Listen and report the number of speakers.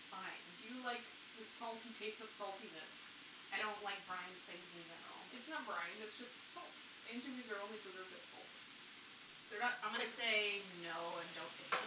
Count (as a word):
two